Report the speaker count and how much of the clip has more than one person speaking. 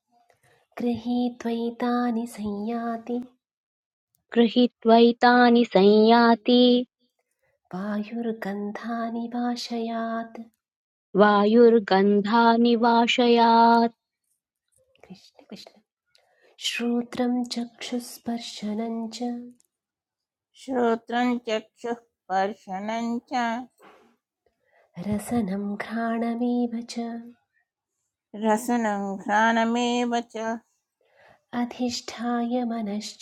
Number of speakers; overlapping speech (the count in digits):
3, no overlap